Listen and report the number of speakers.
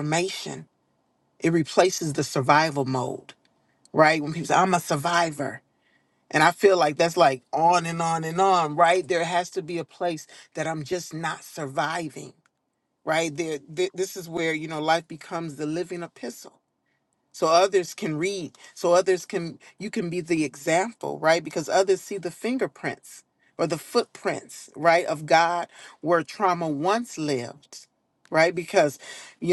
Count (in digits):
1